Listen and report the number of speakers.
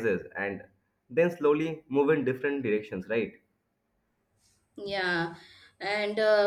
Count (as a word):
two